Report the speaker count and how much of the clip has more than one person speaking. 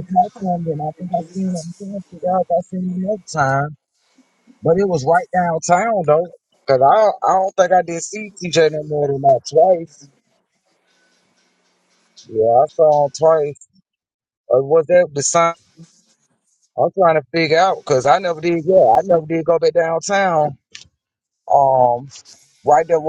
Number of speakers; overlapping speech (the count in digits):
1, no overlap